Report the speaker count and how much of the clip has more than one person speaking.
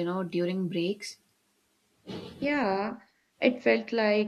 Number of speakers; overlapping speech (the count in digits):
2, no overlap